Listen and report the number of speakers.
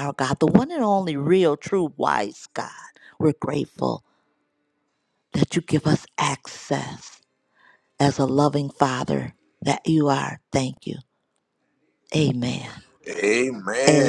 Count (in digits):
2